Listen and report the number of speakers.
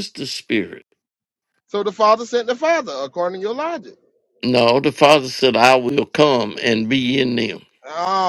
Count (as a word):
two